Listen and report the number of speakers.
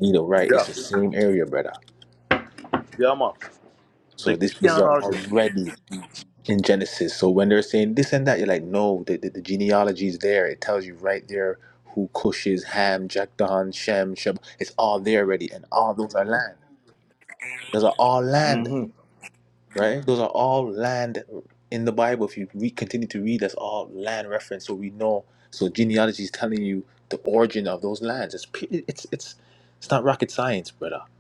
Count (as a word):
two